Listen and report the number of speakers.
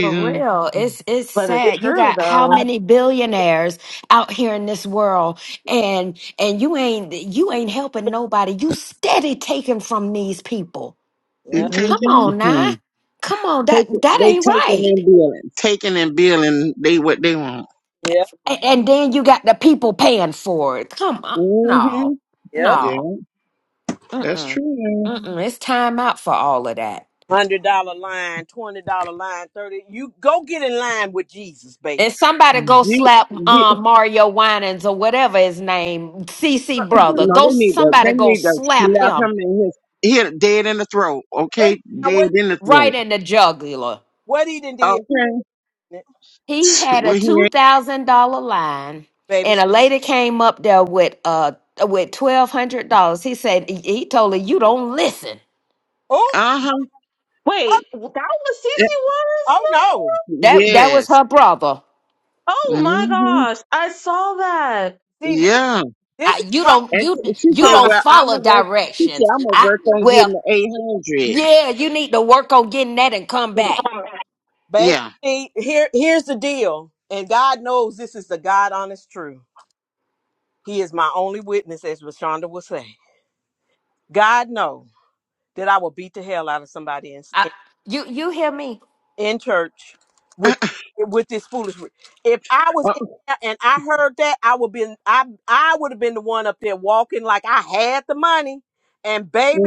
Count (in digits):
4